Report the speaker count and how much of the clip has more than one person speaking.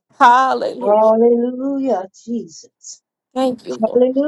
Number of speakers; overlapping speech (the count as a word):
two, about 5%